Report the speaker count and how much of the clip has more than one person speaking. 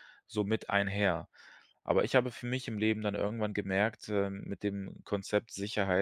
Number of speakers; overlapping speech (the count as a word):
one, no overlap